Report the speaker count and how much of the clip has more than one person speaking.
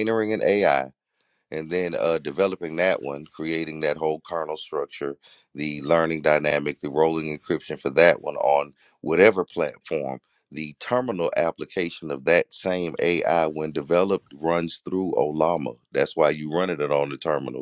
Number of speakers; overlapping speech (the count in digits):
1, no overlap